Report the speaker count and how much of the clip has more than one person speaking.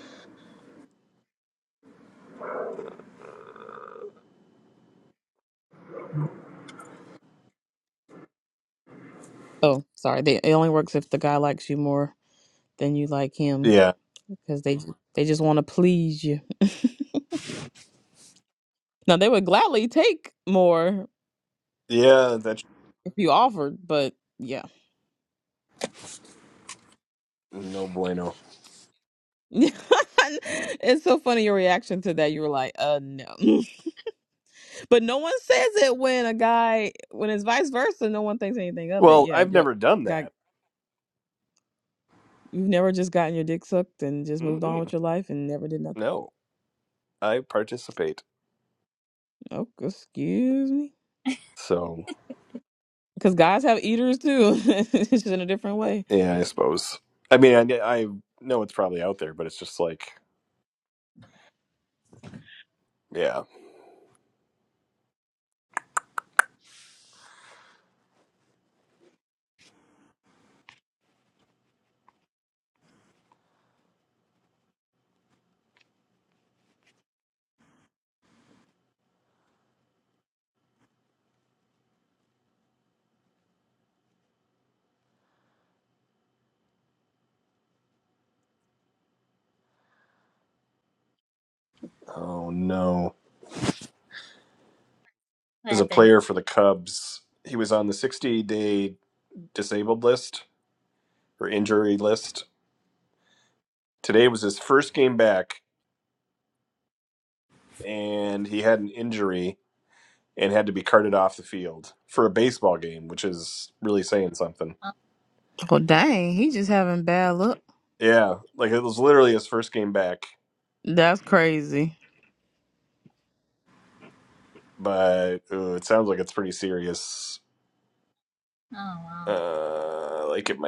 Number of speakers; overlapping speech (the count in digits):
3, about 1%